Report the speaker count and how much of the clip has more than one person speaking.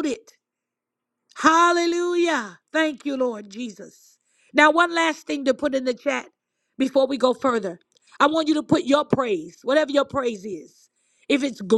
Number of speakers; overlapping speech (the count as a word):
one, no overlap